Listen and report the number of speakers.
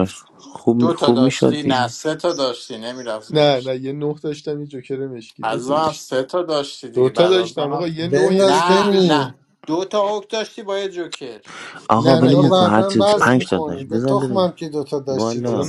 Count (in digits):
4